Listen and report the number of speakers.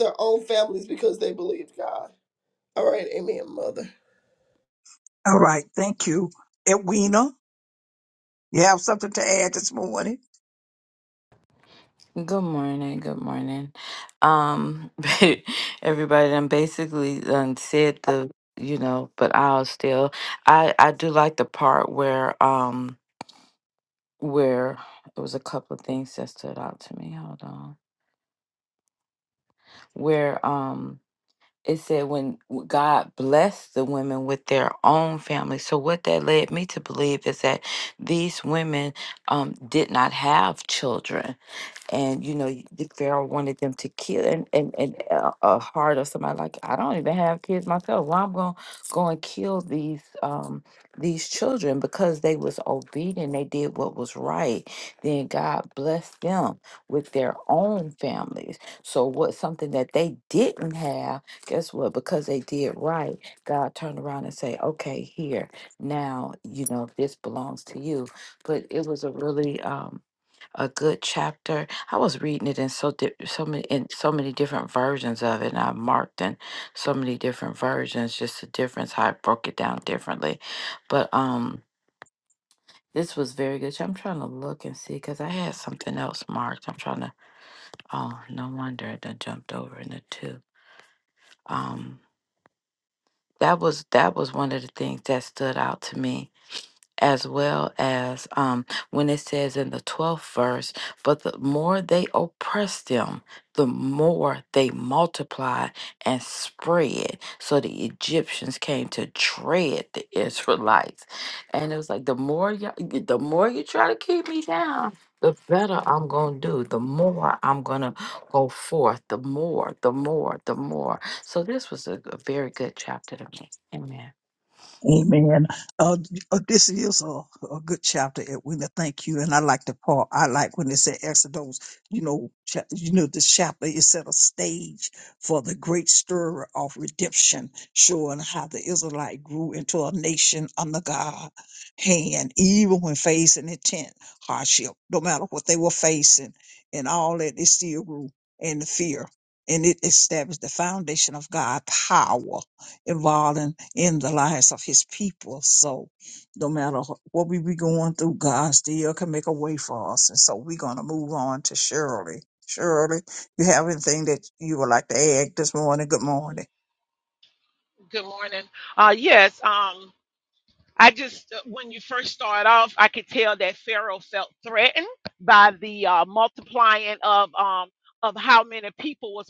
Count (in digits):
4